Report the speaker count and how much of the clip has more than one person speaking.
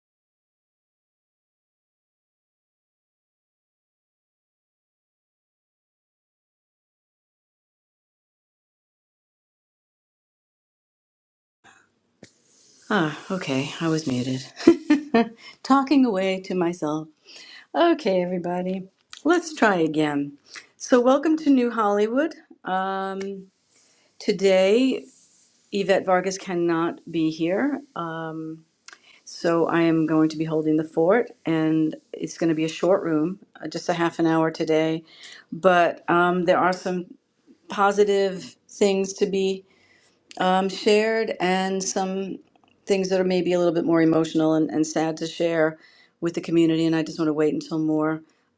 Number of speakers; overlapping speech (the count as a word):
one, no overlap